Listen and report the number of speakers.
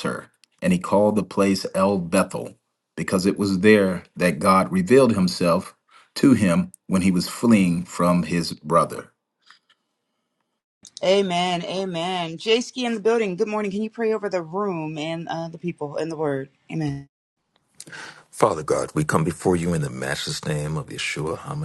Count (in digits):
3